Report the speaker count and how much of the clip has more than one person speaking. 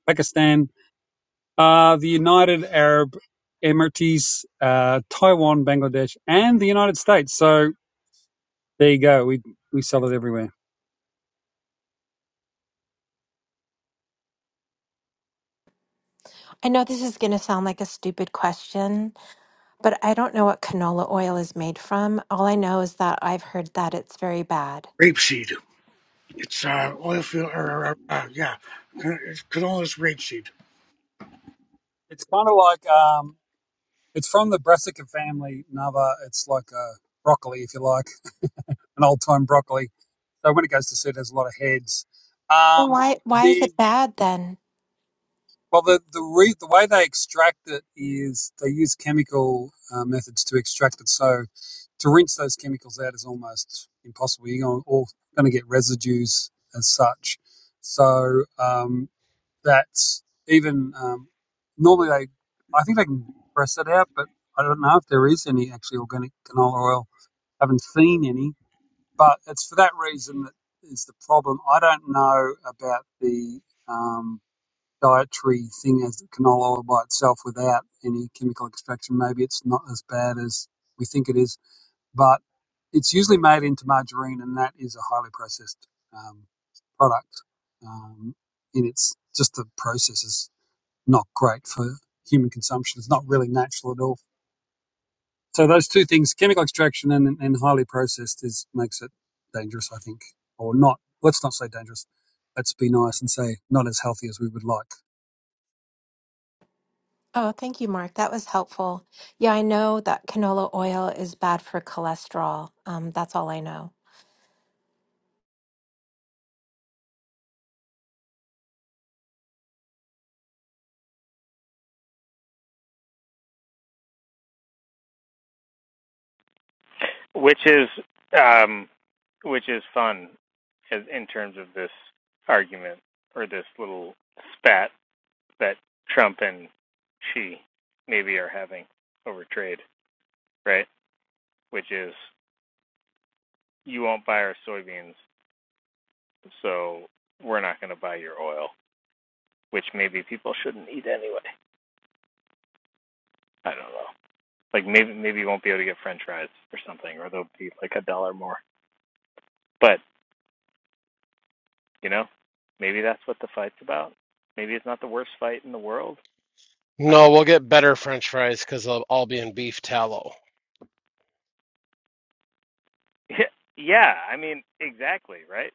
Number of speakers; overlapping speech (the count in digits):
5, under 1%